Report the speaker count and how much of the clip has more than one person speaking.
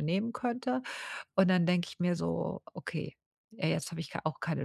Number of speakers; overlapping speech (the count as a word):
one, no overlap